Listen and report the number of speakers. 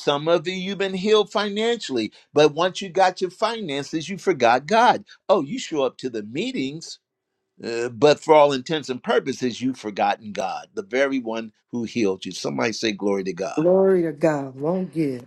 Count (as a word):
two